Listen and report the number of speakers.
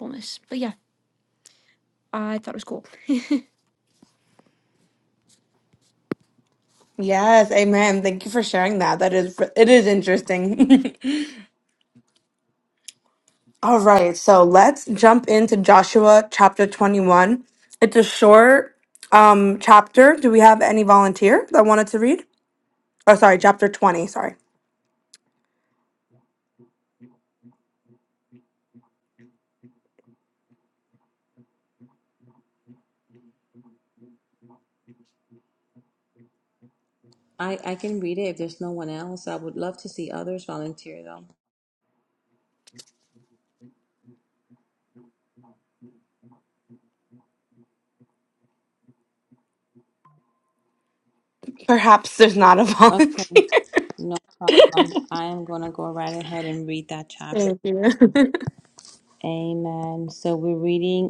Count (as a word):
three